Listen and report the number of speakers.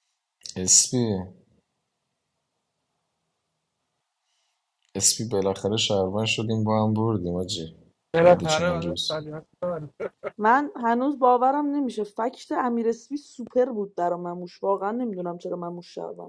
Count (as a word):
three